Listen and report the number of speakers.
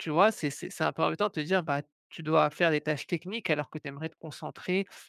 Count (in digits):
1